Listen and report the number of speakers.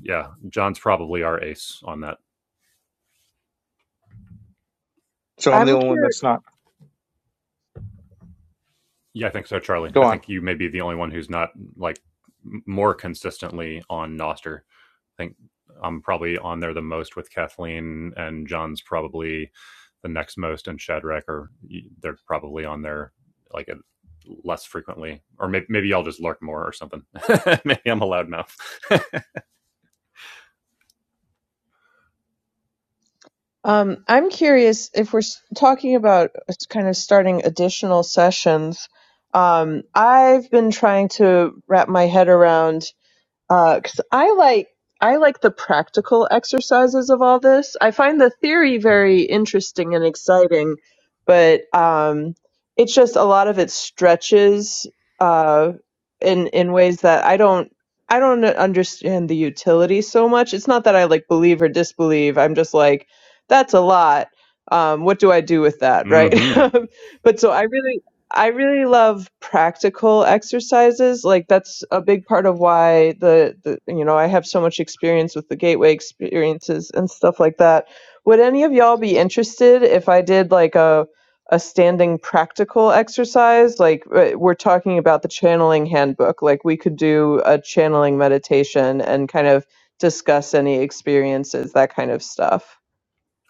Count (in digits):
3